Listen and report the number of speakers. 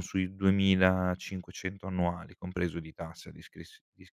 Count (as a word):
one